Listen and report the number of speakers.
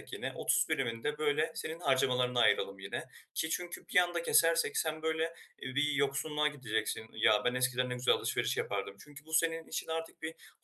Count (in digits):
1